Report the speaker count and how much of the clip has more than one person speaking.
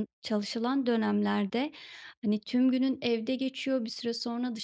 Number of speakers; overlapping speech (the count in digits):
1, no overlap